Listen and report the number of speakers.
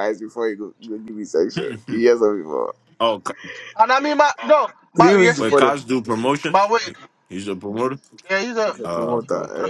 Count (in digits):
3